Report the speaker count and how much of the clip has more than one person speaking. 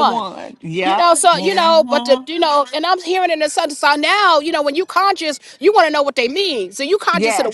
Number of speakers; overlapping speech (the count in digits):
2, about 27%